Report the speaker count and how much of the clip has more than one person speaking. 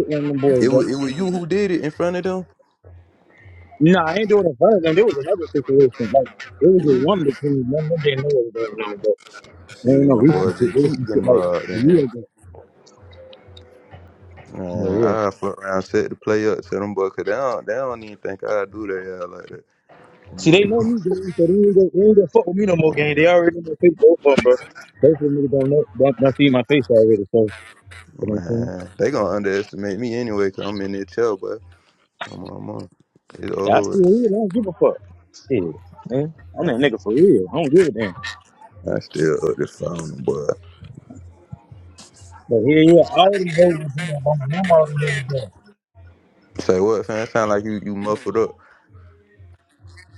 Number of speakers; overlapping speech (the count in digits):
2, about 8%